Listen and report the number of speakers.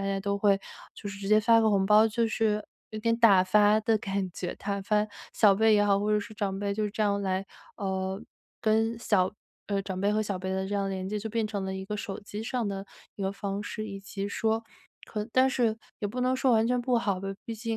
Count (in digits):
1